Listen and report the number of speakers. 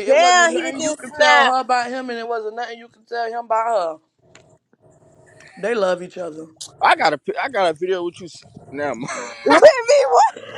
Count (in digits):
3